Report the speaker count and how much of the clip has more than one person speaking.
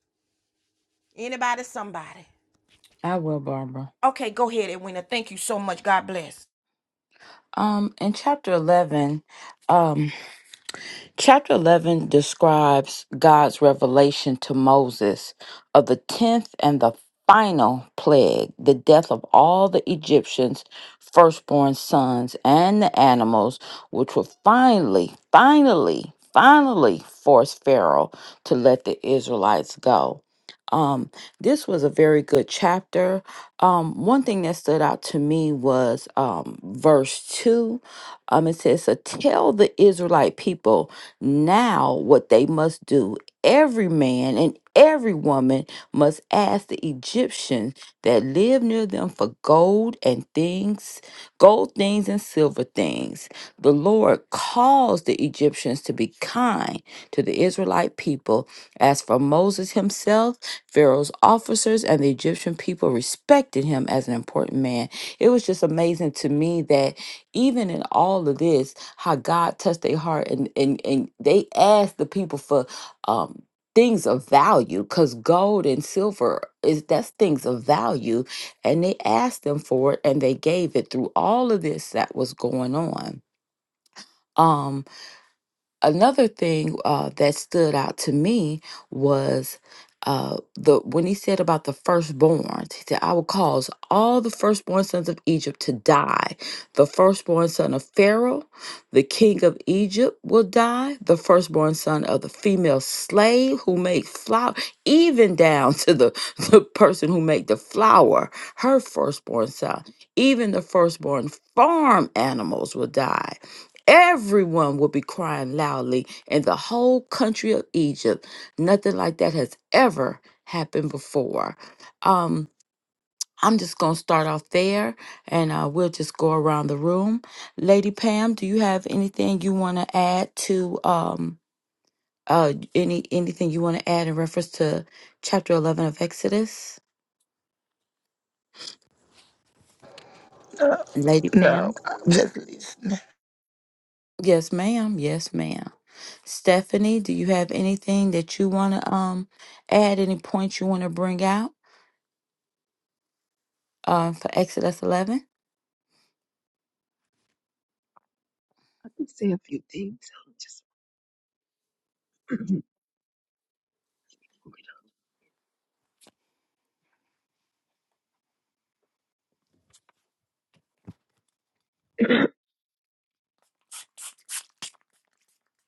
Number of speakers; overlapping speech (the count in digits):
4, under 1%